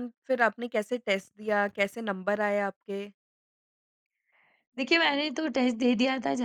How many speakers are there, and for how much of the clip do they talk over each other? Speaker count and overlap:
2, no overlap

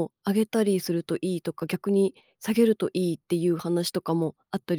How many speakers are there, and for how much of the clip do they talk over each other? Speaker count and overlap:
1, no overlap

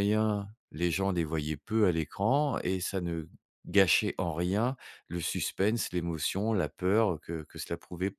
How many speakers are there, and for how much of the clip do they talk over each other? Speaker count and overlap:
1, no overlap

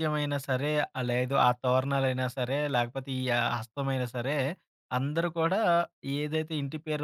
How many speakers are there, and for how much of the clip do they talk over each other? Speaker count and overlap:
1, no overlap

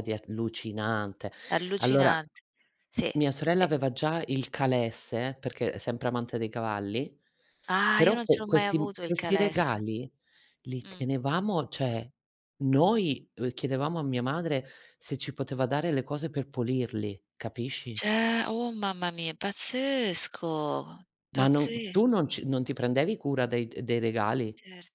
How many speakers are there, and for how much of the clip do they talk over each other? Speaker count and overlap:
2, about 13%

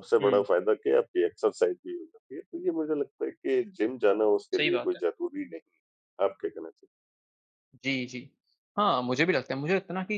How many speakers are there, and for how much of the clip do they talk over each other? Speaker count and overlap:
2, about 7%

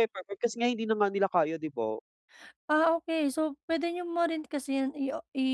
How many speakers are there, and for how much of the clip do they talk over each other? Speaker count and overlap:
2, no overlap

